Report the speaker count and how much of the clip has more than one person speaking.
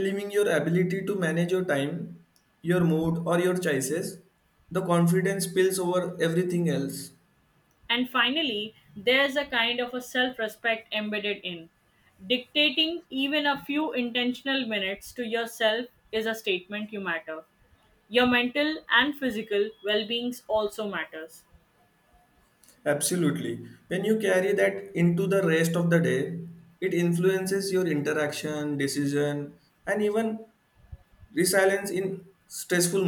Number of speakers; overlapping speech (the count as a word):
two, no overlap